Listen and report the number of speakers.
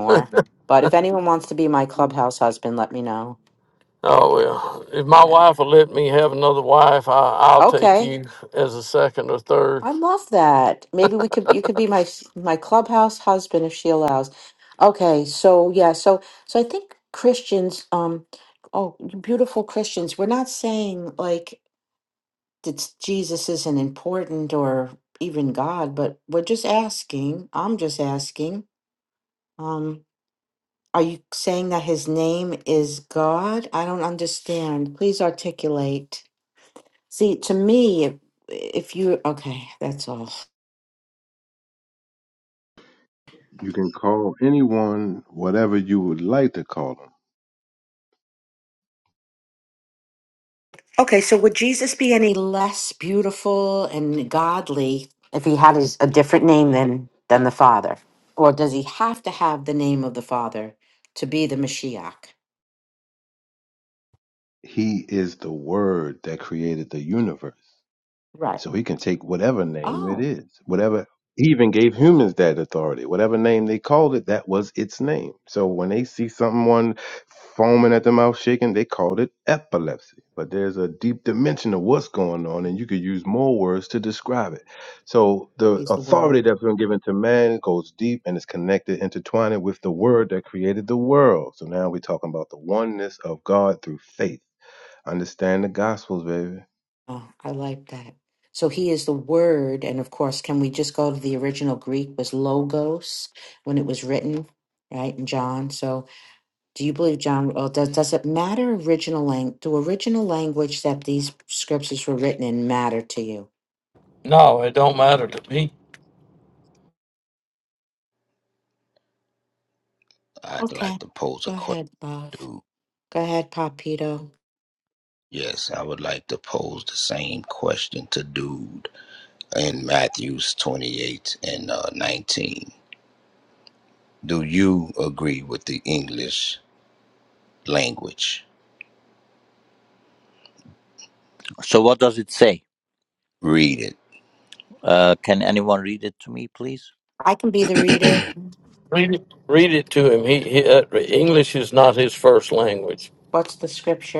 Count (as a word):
five